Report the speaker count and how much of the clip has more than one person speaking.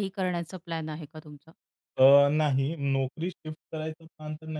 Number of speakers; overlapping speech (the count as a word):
two, no overlap